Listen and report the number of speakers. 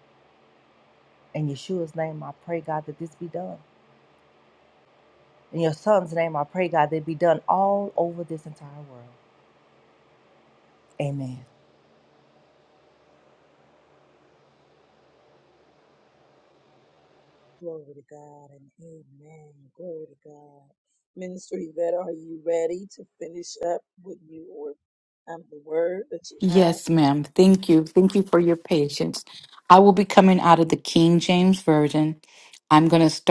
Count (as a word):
three